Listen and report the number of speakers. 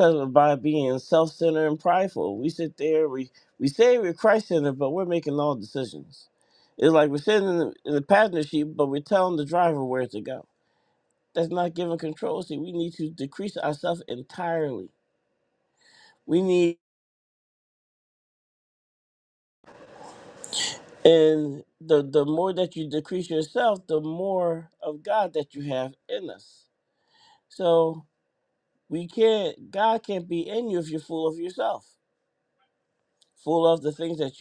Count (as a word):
one